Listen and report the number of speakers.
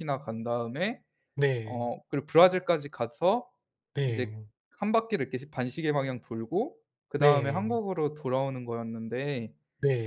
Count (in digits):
2